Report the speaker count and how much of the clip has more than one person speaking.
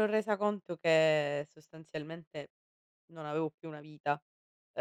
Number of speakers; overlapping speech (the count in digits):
1, no overlap